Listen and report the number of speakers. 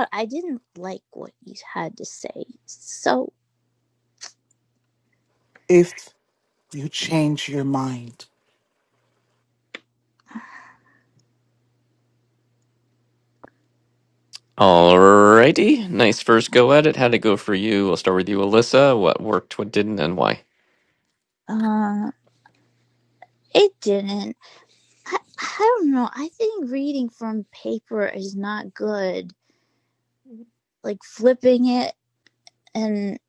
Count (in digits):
3